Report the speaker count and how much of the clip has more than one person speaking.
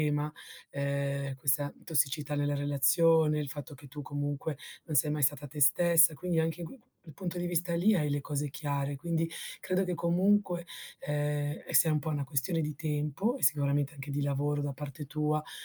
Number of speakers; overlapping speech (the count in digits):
1, no overlap